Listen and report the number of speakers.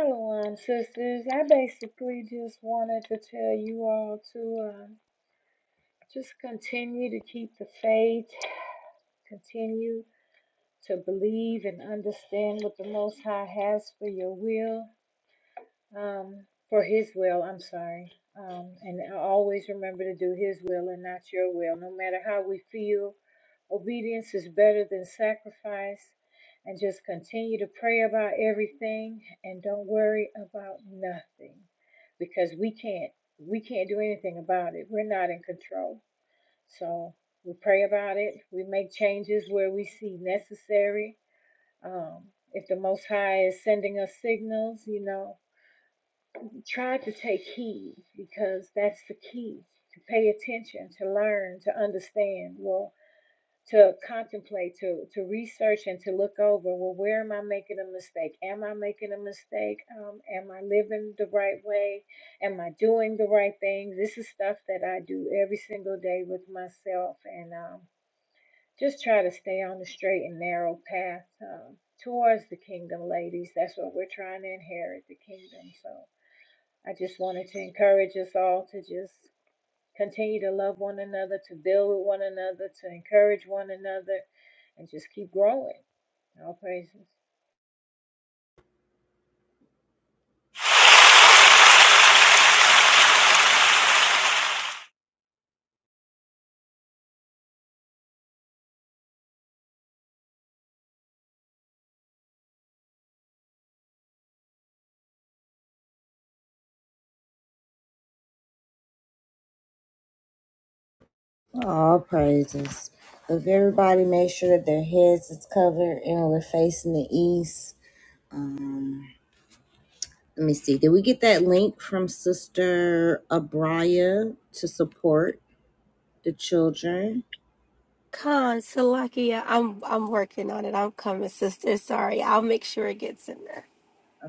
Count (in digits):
3